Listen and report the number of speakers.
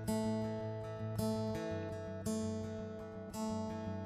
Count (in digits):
0